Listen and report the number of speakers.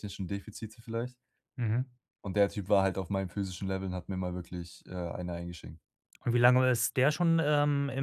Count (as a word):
two